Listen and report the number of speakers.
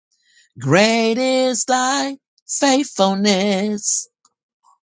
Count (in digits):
1